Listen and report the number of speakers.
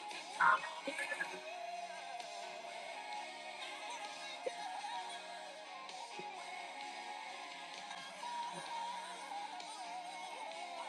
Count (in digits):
0